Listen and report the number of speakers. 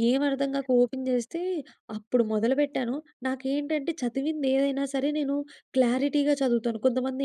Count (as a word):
one